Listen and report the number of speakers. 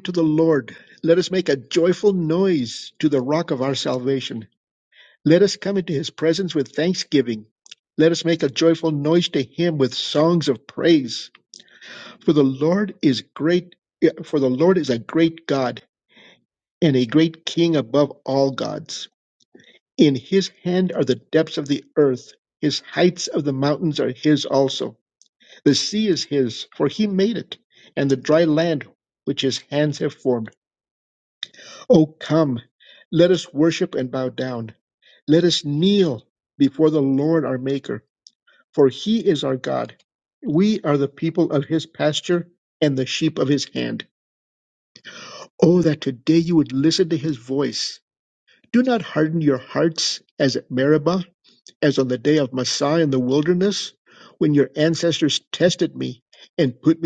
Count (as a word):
one